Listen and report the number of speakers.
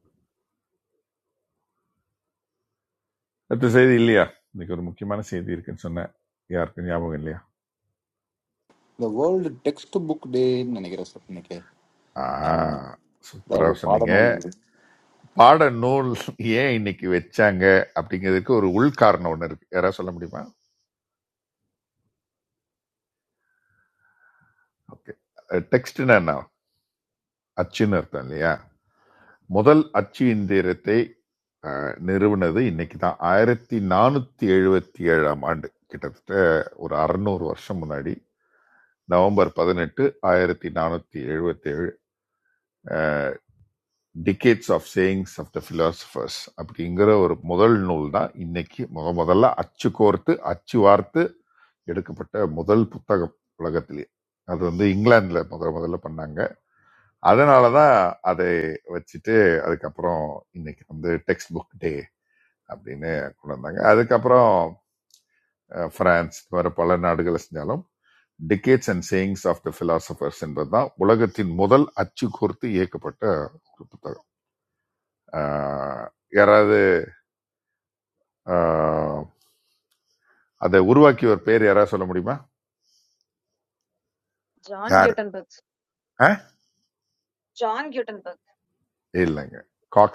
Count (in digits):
3